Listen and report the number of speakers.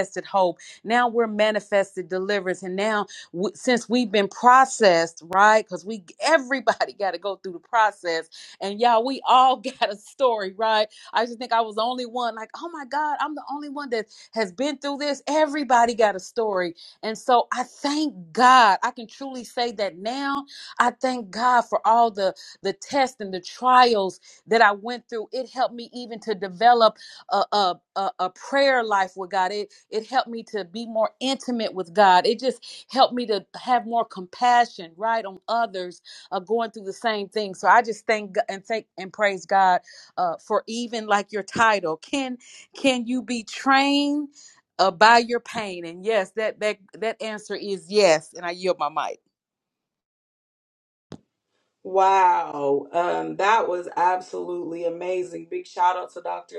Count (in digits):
2